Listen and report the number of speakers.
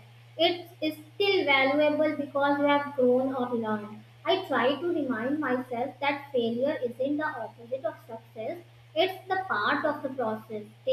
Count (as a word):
one